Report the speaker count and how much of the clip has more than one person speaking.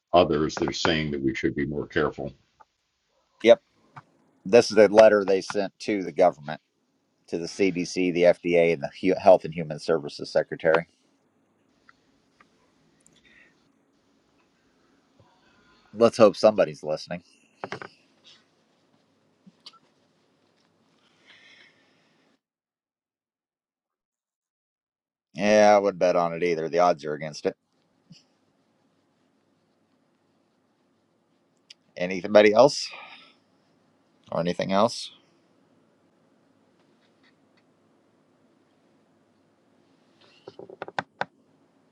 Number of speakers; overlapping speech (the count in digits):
2, no overlap